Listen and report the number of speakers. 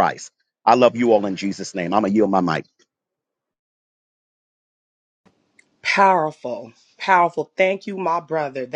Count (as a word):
two